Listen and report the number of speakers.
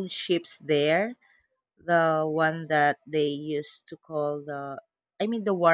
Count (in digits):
1